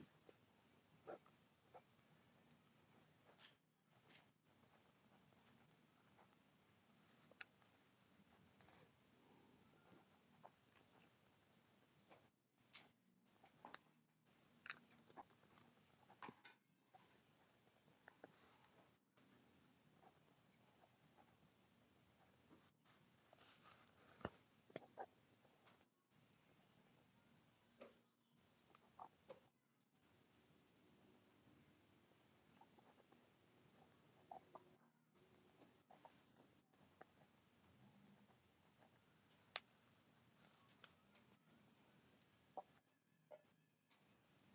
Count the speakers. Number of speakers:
0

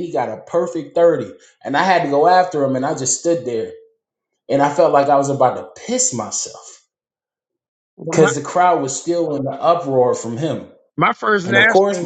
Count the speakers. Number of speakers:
2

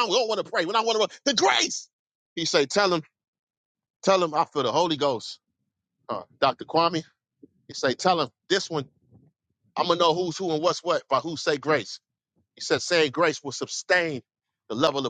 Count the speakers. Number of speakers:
1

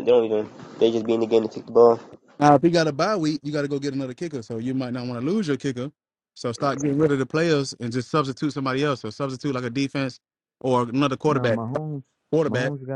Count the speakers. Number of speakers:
3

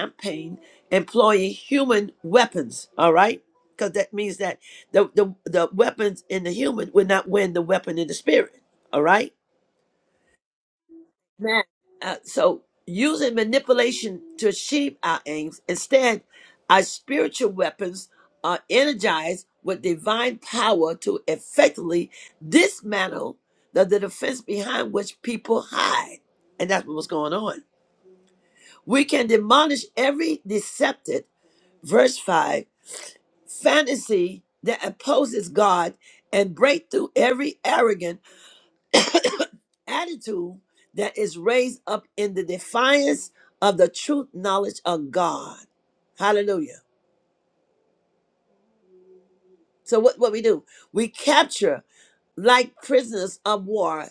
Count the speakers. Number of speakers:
1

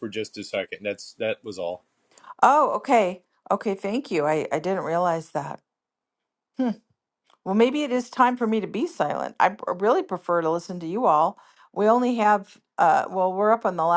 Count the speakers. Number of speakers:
2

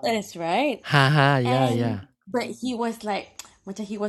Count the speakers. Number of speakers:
2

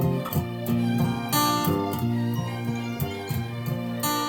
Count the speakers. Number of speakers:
0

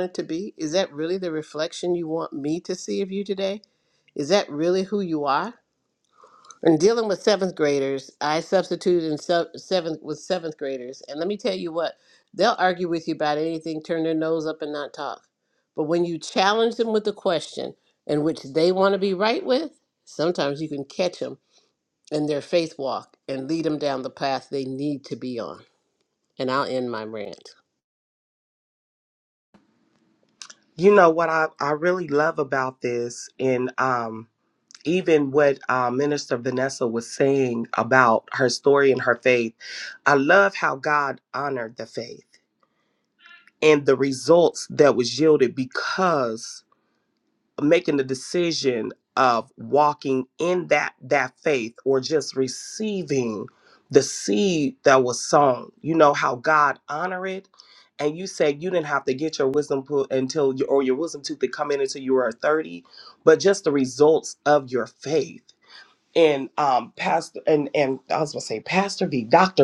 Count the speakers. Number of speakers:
2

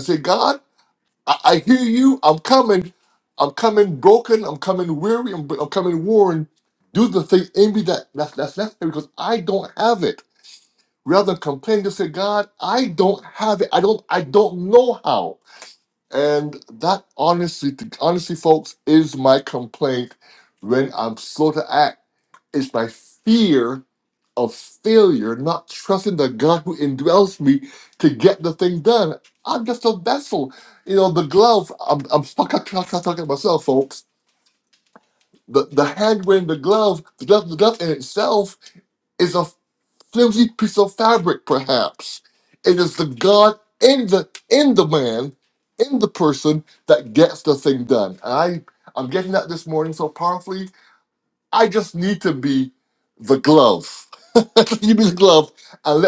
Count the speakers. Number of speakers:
1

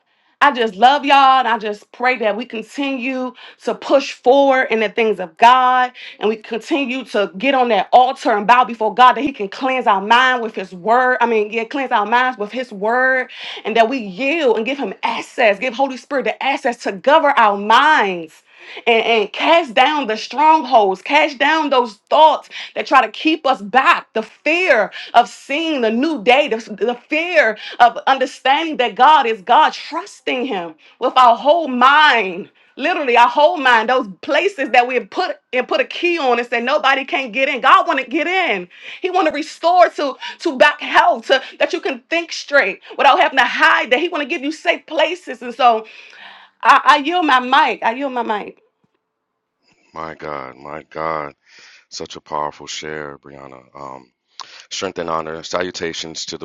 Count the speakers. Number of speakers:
2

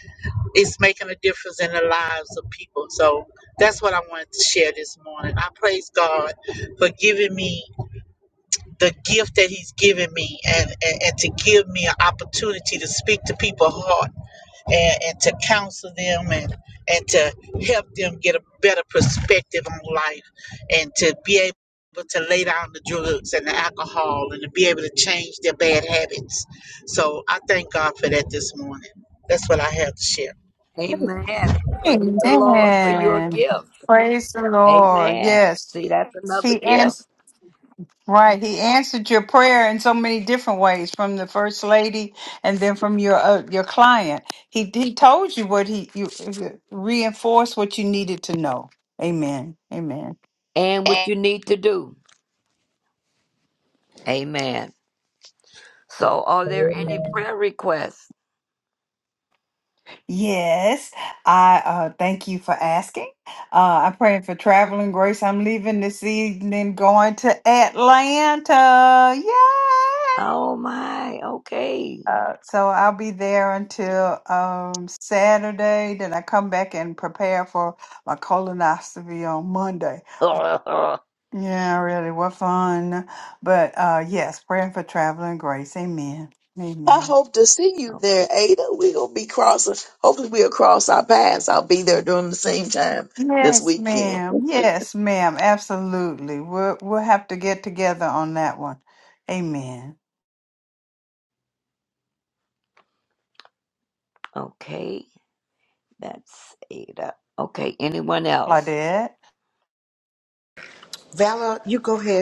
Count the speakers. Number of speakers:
5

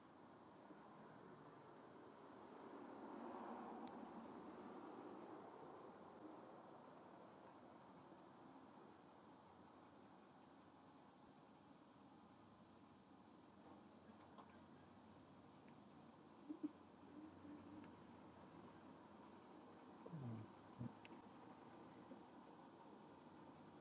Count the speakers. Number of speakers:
0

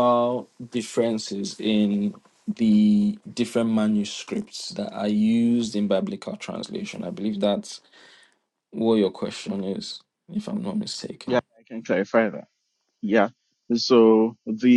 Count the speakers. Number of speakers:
2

